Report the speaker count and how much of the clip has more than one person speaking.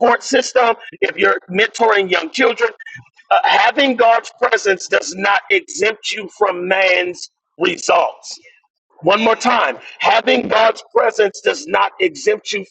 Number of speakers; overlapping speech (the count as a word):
one, no overlap